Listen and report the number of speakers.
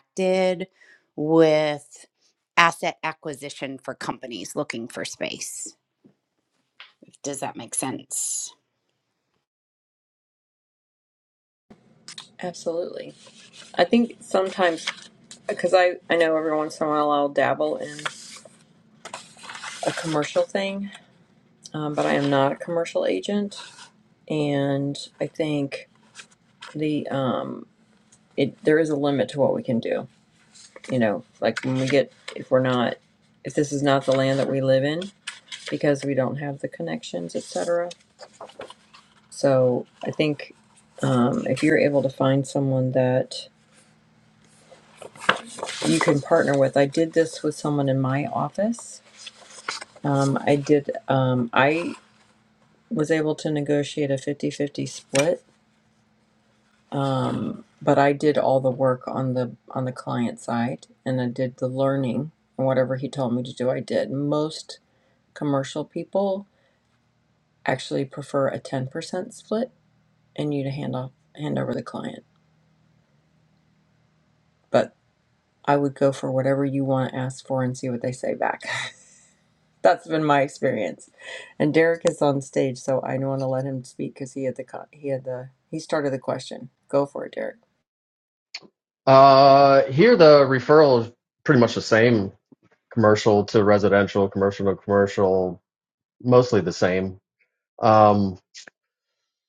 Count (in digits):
3